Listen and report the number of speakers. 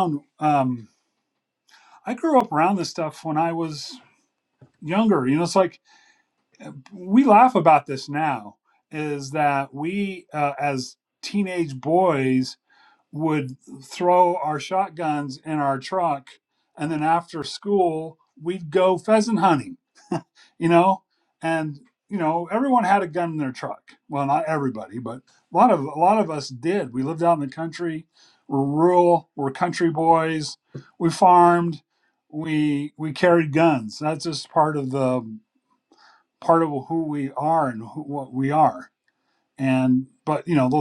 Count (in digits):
1